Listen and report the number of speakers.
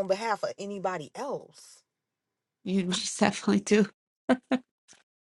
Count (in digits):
2